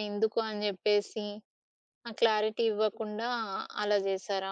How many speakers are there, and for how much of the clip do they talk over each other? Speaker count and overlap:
1, no overlap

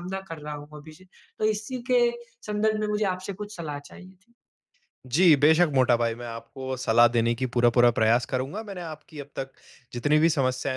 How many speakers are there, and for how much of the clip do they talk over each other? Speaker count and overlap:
2, no overlap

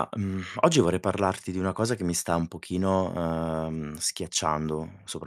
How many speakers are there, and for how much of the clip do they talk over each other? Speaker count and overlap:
1, no overlap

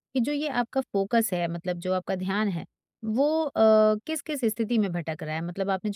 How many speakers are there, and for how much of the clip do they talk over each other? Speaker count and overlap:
1, no overlap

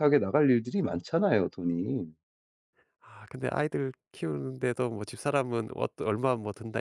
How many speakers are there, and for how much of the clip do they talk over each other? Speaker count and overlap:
2, no overlap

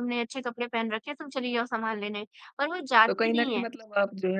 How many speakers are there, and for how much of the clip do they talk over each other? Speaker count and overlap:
2, about 13%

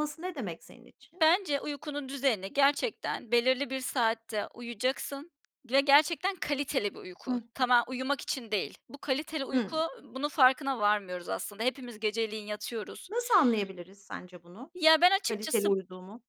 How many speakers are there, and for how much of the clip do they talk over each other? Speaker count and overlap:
2, about 5%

